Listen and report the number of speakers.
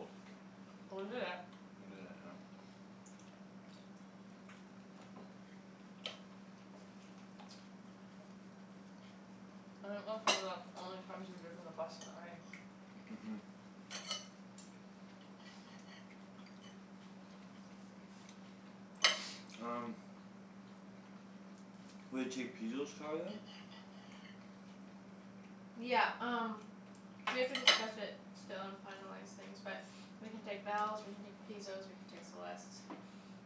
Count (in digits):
3